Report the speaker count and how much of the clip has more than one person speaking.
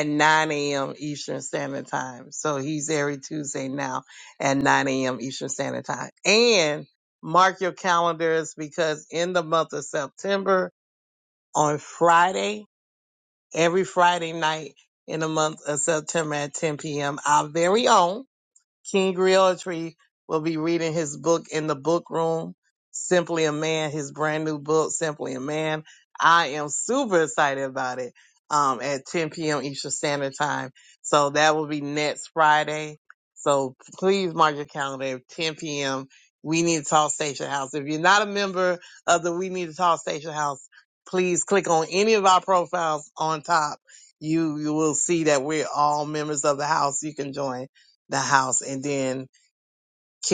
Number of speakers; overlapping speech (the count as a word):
one, no overlap